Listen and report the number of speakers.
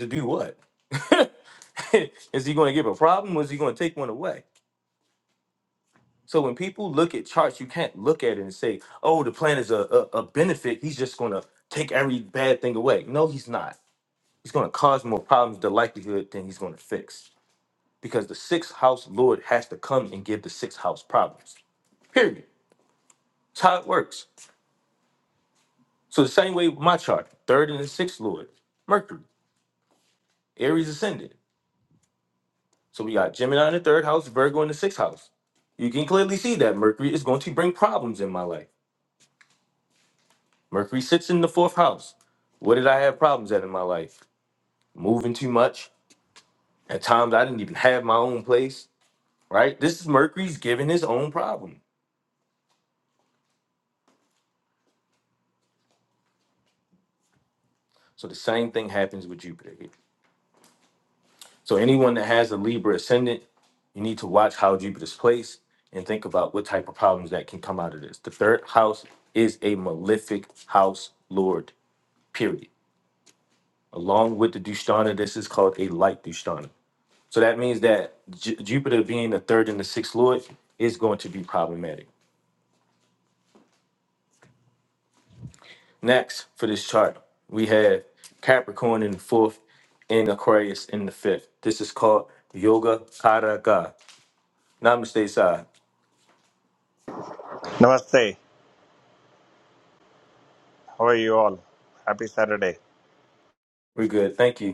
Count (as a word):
two